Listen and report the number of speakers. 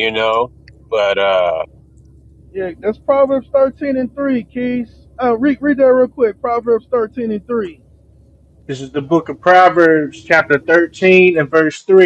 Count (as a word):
three